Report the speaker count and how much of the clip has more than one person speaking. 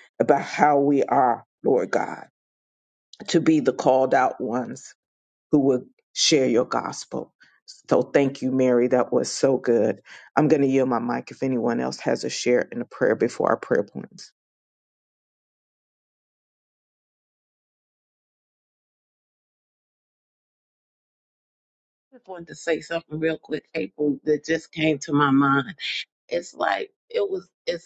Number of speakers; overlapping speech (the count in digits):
2, no overlap